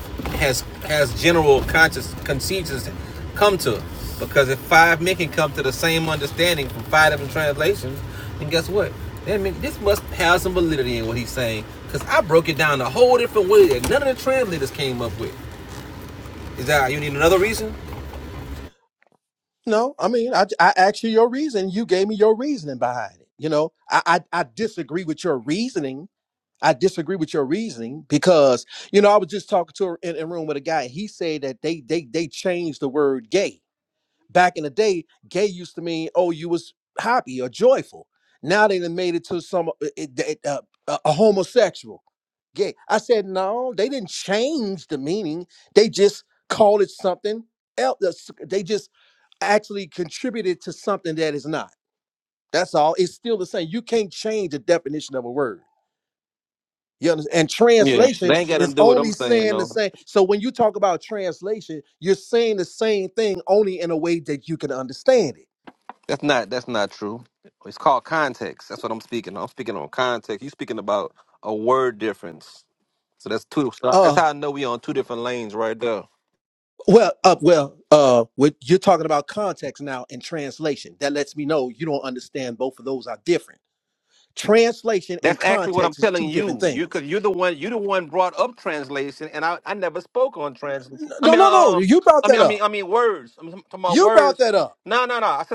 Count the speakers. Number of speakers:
two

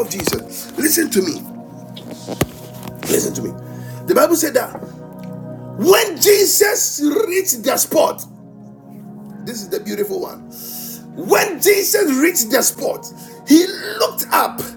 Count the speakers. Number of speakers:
one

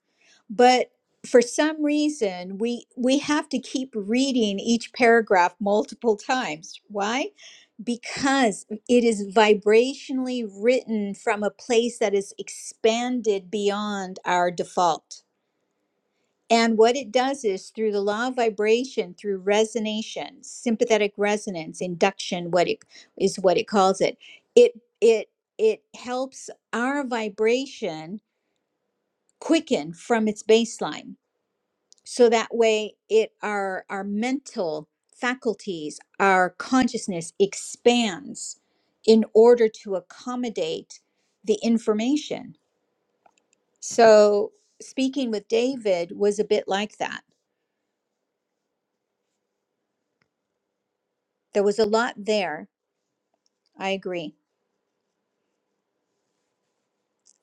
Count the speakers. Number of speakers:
one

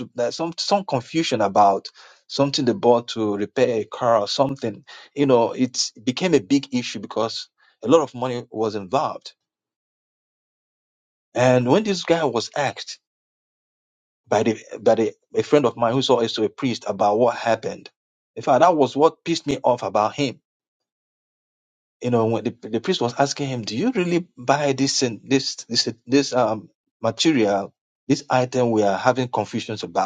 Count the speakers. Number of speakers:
one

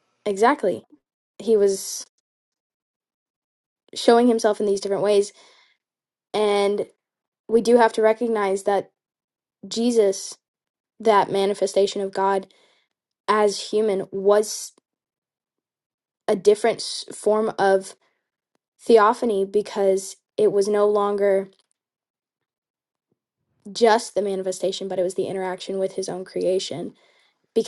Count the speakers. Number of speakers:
one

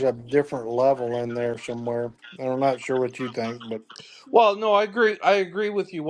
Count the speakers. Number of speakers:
two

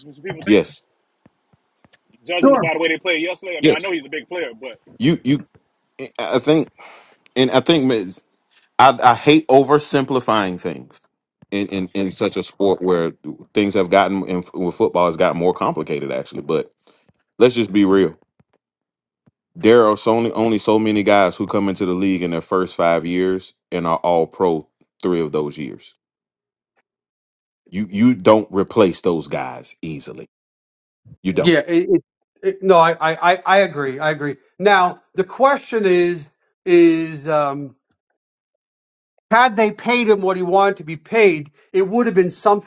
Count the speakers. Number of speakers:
three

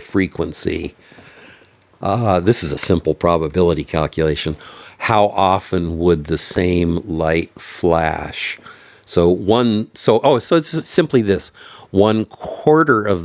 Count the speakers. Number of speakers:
one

